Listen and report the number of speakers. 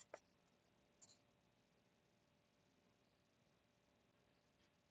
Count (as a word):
zero